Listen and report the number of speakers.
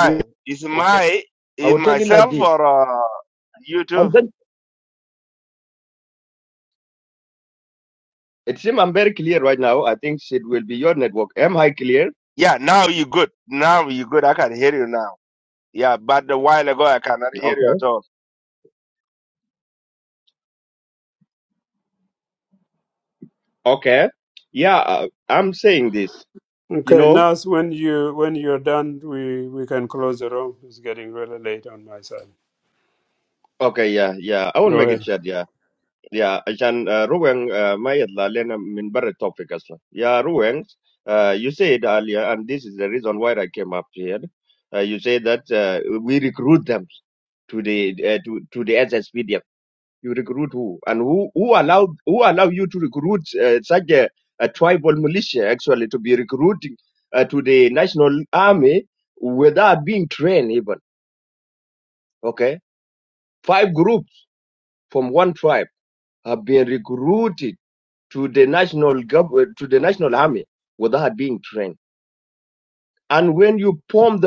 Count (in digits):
3